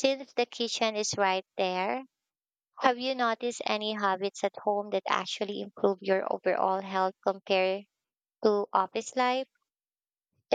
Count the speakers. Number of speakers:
one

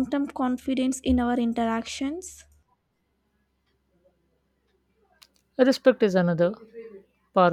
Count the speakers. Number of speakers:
two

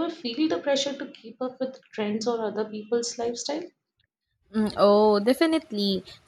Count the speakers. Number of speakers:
two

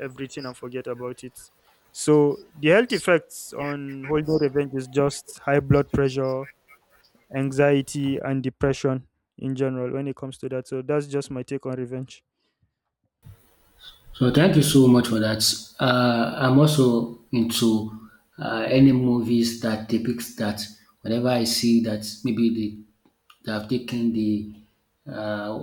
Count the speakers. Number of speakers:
two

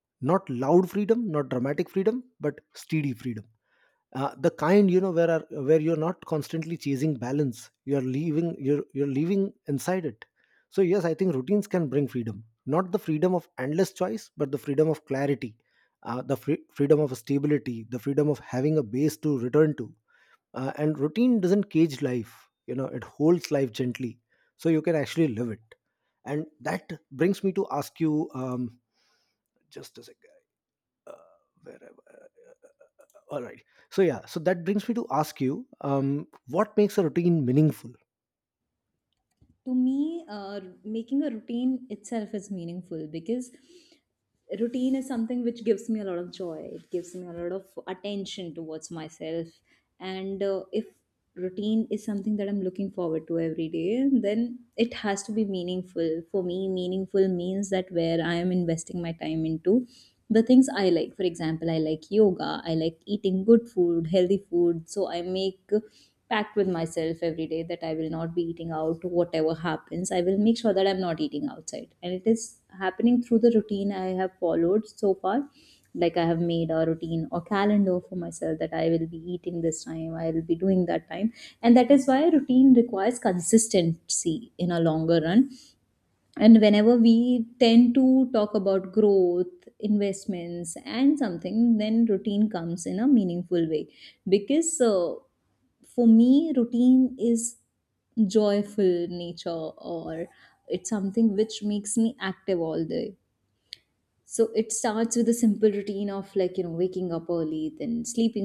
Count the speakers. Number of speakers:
two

